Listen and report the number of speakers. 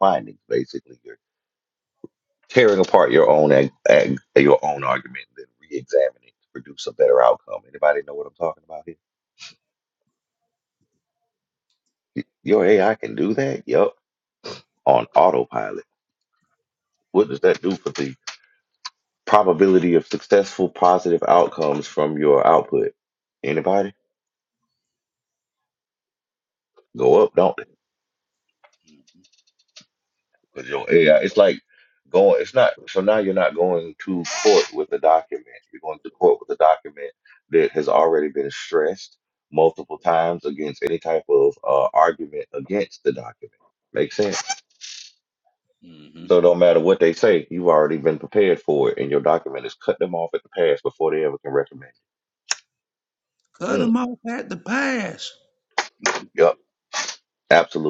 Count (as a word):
two